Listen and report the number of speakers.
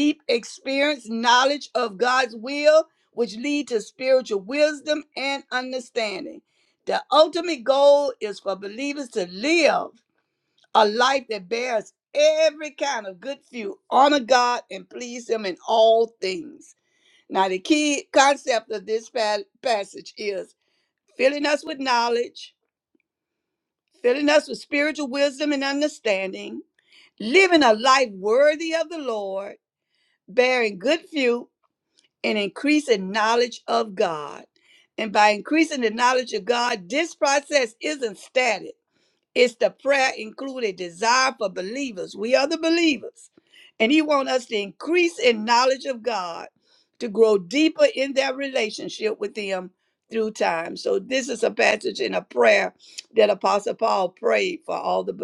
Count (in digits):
1